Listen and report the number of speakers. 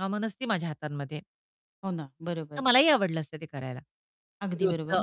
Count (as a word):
two